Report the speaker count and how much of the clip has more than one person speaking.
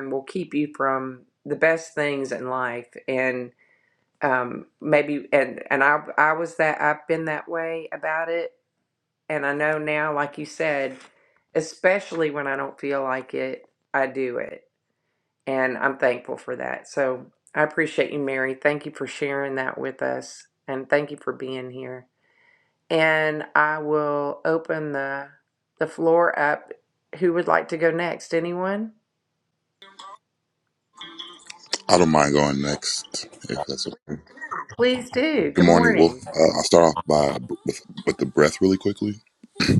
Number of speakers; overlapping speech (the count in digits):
2, about 2%